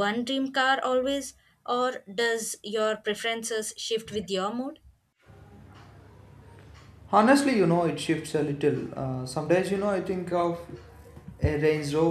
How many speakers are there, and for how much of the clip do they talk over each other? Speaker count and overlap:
2, no overlap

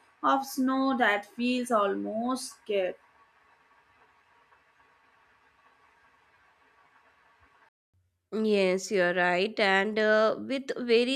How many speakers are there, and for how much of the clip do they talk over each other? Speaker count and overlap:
2, no overlap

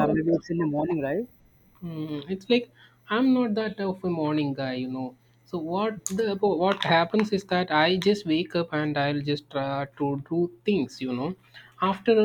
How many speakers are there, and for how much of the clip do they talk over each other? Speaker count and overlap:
2, about 2%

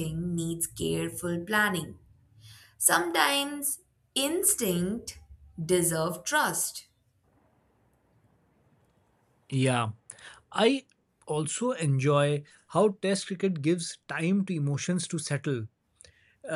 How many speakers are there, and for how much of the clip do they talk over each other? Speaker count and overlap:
2, no overlap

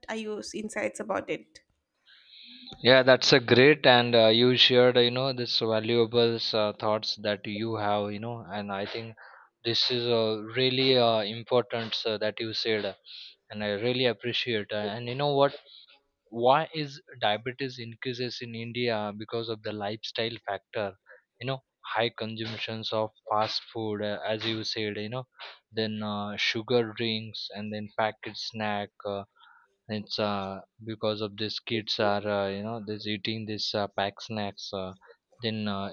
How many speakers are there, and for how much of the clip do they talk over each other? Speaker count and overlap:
2, no overlap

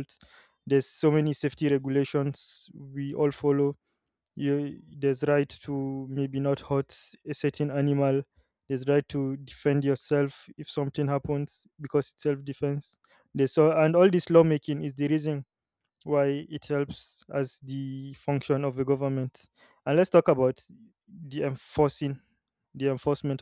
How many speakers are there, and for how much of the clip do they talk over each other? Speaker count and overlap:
1, no overlap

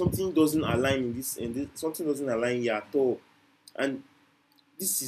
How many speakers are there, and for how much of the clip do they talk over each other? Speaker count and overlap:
1, no overlap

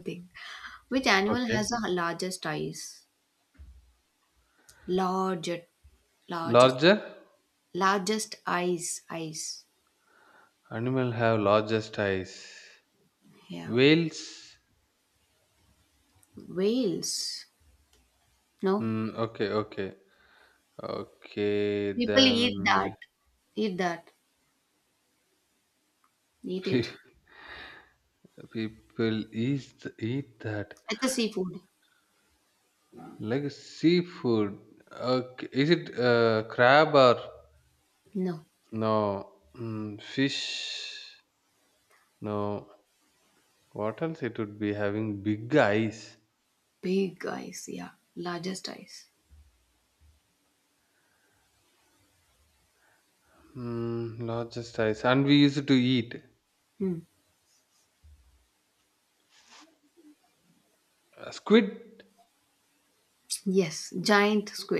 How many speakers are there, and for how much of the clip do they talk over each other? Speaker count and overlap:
2, about 3%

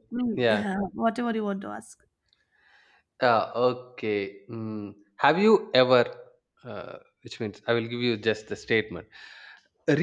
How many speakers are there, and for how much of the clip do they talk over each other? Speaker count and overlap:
2, about 3%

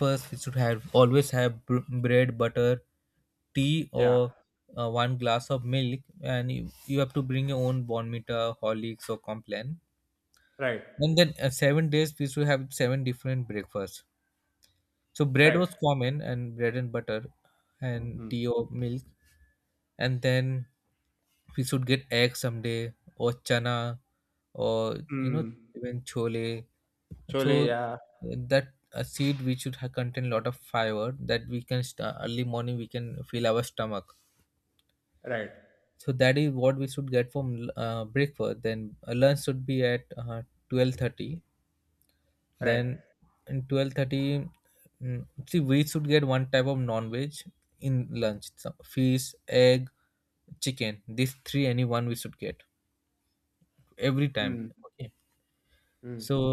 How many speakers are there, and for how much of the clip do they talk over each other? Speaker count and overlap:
2, about 3%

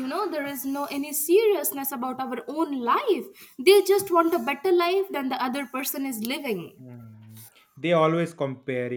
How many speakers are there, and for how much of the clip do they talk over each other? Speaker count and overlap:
2, no overlap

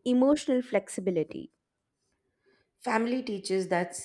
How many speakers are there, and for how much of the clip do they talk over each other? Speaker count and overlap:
2, no overlap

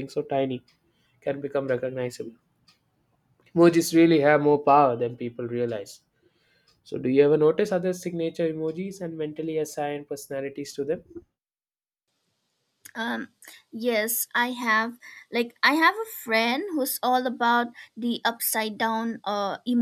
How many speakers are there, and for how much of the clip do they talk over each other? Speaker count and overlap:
2, no overlap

